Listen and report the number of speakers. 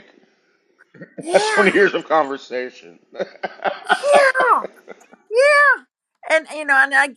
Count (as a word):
two